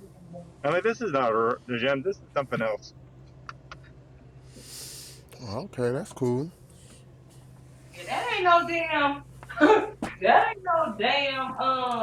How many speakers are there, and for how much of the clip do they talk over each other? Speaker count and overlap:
3, no overlap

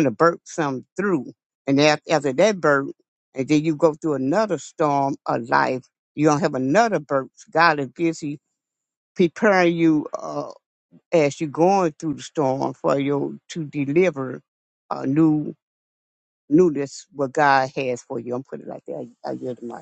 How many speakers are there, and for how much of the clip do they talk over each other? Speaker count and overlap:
1, no overlap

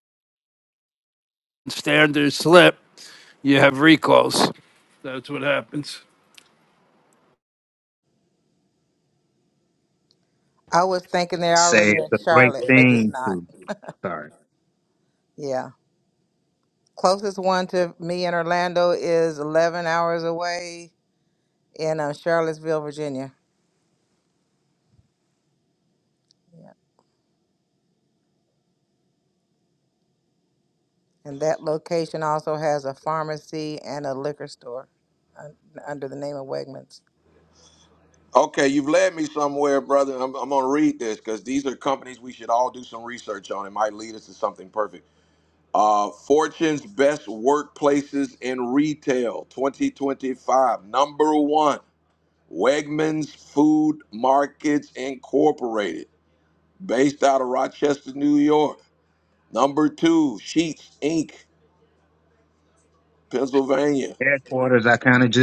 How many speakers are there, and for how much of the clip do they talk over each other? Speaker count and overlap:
4, about 3%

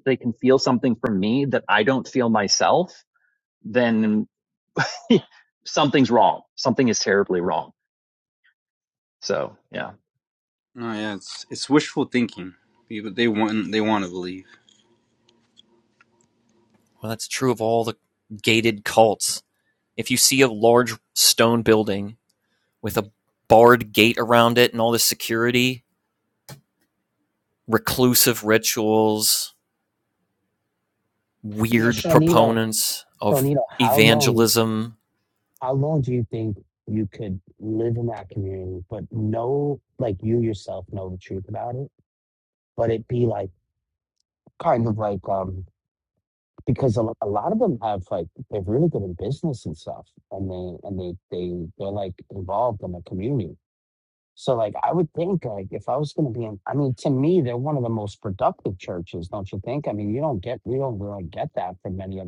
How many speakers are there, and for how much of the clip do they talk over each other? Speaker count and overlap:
4, about 3%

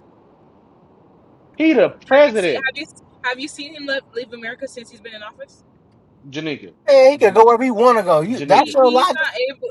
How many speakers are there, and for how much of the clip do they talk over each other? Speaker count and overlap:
3, about 18%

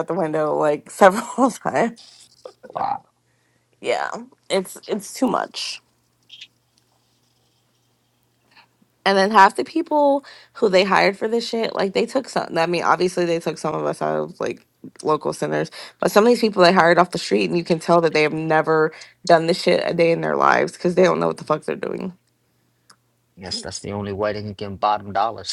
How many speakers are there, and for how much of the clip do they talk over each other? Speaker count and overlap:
2, no overlap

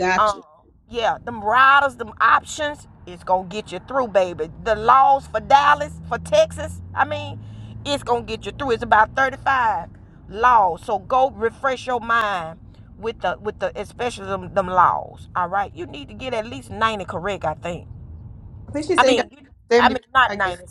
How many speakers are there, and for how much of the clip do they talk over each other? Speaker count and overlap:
2, about 6%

